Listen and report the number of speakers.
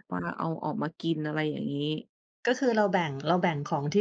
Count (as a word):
two